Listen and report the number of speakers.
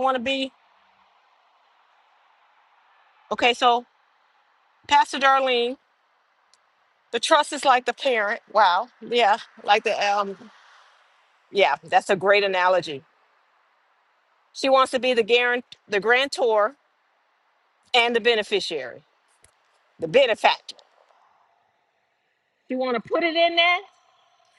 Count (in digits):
1